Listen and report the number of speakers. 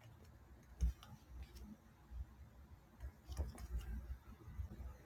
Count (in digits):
0